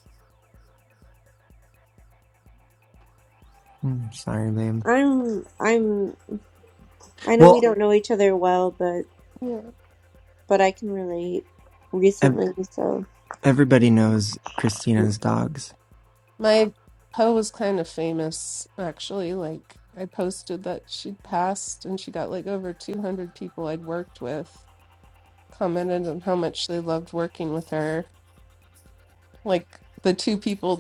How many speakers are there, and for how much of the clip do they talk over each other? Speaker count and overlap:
3, about 2%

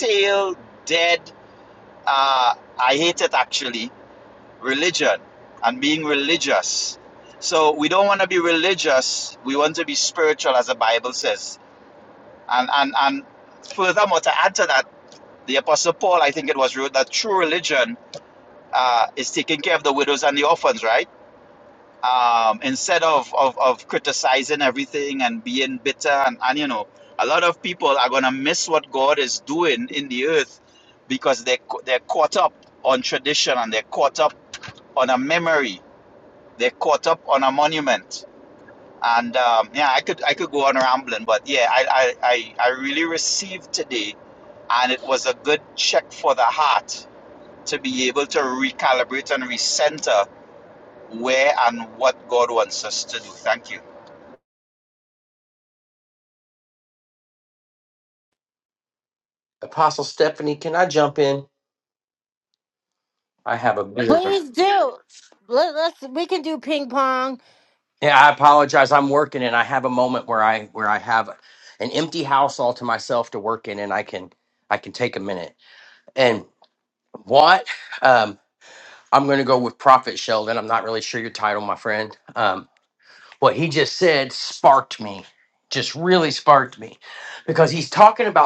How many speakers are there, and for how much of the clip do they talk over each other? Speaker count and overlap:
3, under 1%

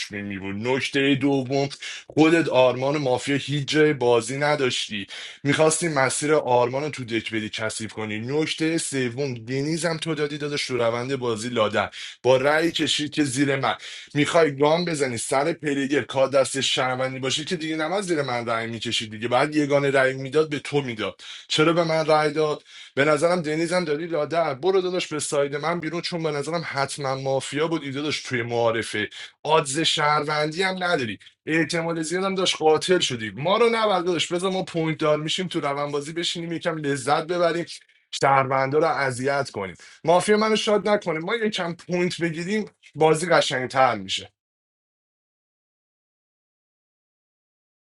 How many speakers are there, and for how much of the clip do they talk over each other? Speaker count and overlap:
1, no overlap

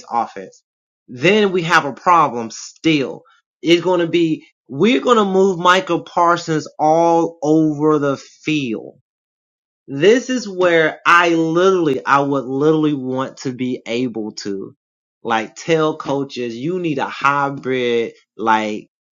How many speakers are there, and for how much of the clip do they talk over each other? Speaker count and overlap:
1, no overlap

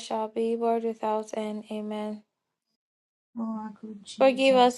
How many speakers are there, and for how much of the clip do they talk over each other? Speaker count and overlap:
2, about 11%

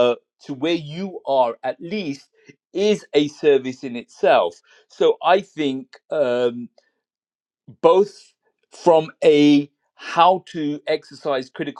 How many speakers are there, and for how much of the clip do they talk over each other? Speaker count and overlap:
1, no overlap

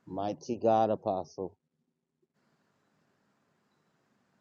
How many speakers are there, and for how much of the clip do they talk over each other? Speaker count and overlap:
1, no overlap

